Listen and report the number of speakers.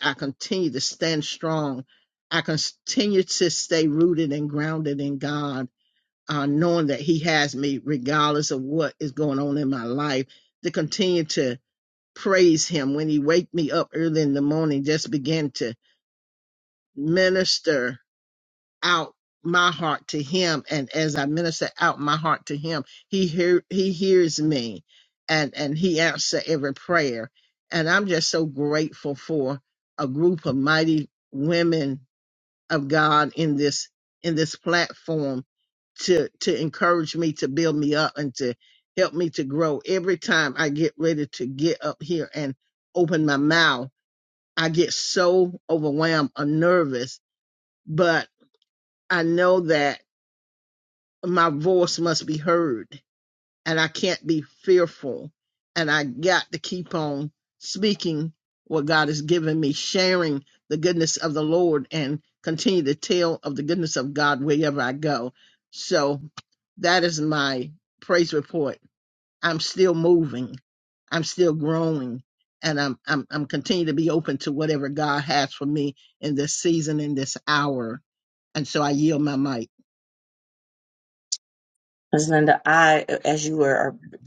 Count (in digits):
2